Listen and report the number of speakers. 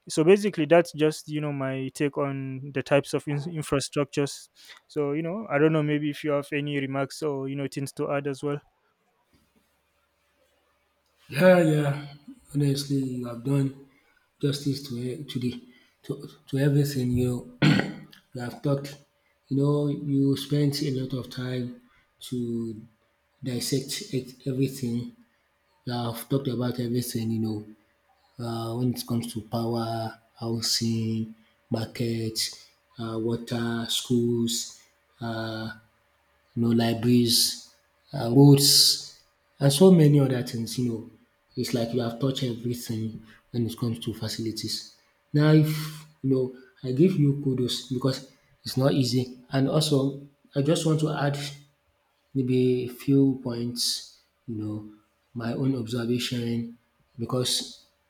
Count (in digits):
2